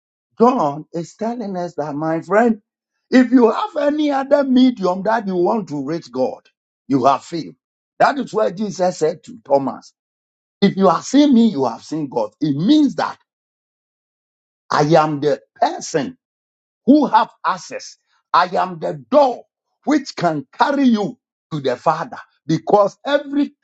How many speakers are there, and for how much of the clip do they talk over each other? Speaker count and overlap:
1, no overlap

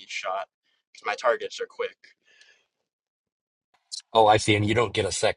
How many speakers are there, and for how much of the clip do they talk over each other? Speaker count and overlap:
2, no overlap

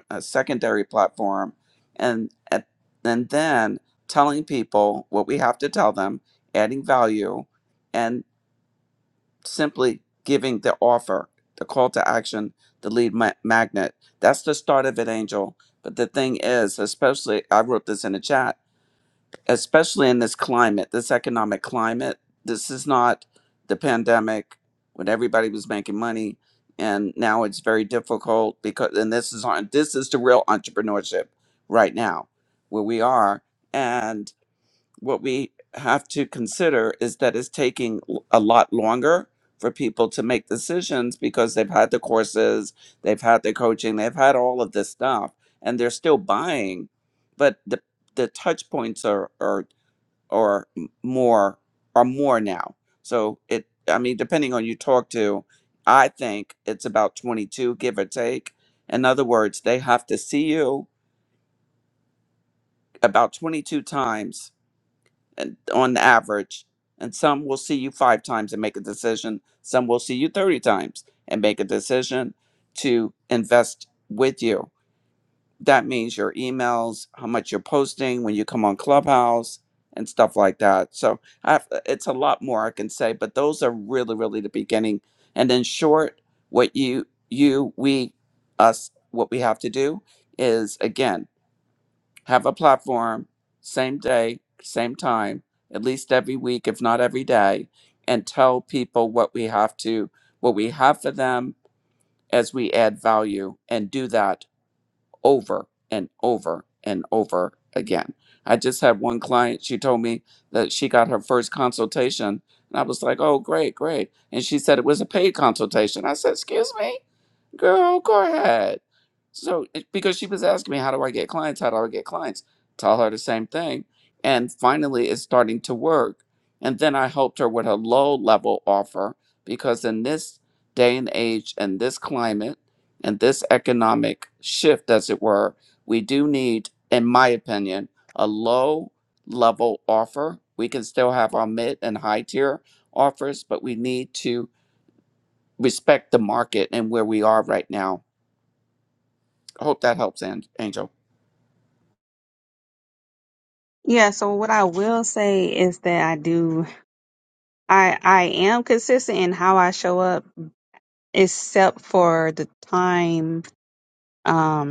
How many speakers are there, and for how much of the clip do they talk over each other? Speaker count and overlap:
2, no overlap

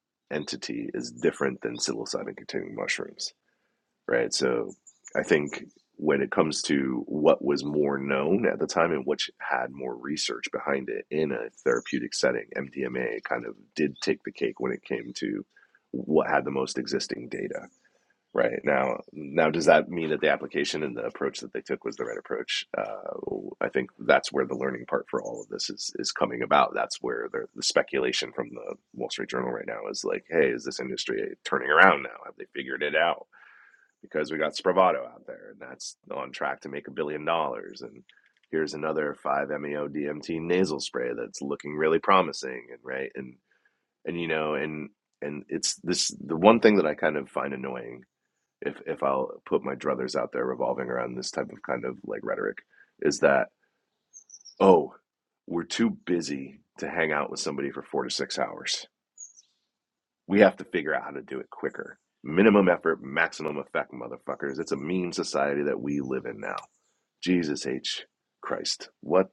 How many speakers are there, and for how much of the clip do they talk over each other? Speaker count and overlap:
1, no overlap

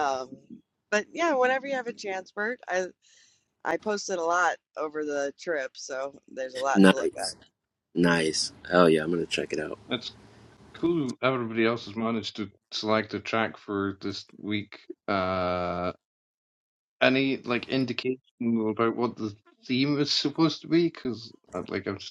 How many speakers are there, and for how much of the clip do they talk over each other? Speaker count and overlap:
3, about 2%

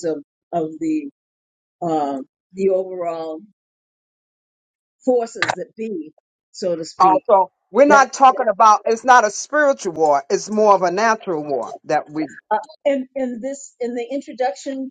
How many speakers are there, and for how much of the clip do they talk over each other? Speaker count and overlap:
2, about 3%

